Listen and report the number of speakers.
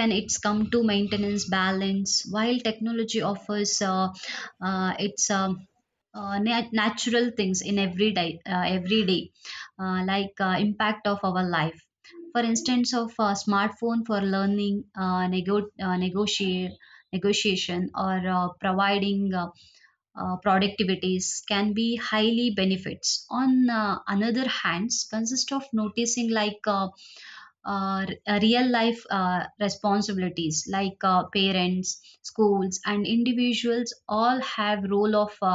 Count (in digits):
1